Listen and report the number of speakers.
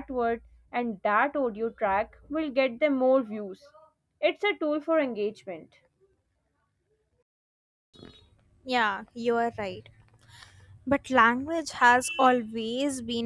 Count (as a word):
two